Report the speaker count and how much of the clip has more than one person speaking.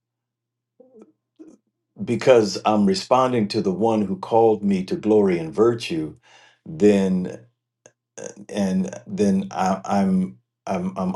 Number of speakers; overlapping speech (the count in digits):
1, no overlap